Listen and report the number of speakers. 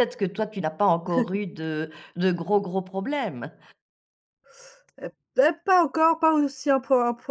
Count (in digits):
2